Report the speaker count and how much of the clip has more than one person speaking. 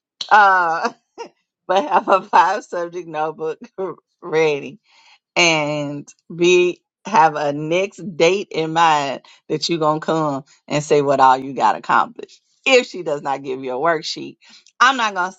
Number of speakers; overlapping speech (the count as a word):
one, no overlap